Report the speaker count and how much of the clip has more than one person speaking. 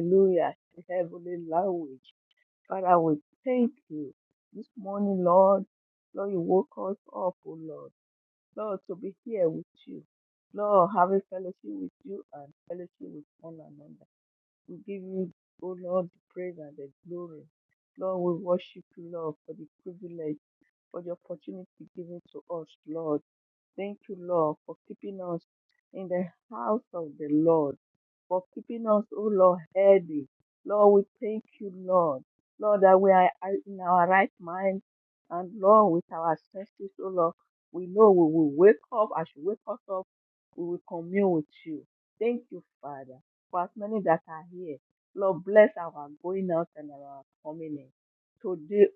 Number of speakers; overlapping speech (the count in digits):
1, no overlap